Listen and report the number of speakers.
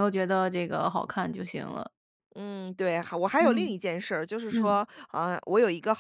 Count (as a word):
two